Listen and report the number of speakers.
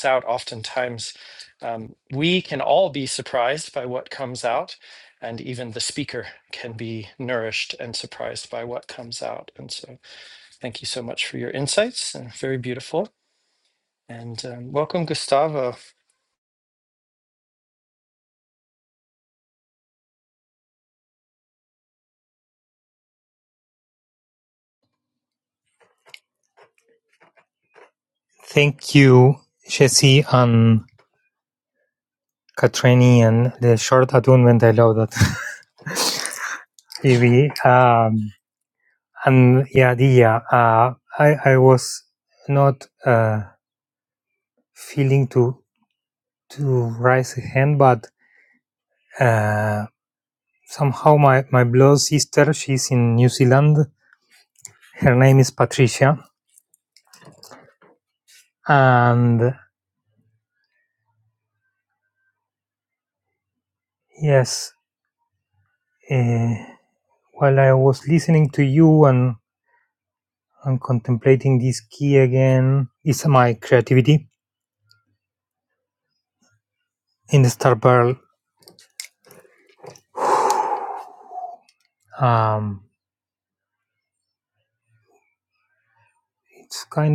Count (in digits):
2